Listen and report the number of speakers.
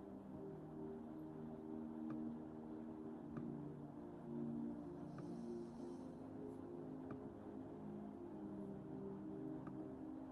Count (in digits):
0